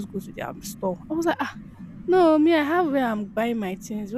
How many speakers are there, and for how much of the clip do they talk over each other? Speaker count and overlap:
one, no overlap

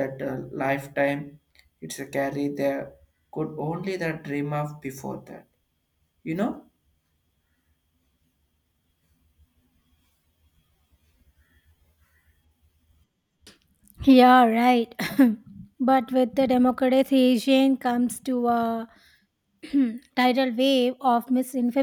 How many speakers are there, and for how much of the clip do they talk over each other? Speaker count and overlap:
two, no overlap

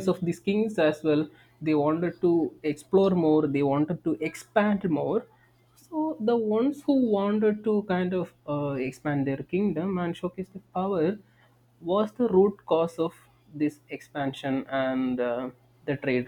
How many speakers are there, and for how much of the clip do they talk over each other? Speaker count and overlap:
one, no overlap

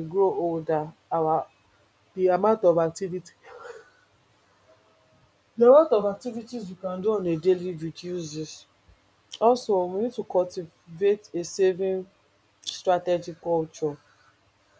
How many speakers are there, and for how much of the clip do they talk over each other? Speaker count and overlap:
one, no overlap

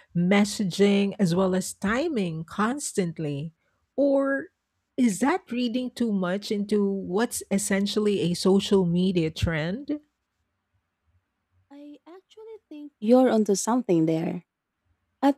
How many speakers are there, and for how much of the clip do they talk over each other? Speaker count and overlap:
two, no overlap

